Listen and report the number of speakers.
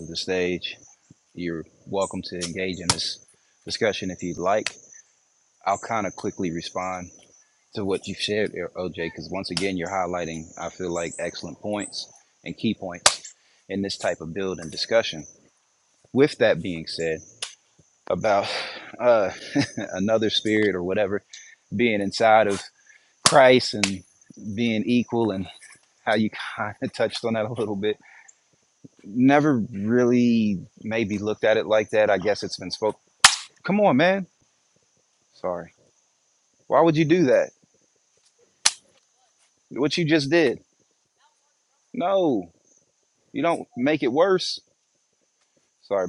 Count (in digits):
1